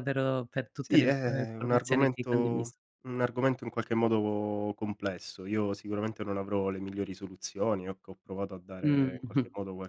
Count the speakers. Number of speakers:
two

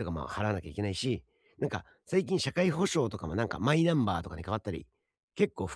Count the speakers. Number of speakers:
one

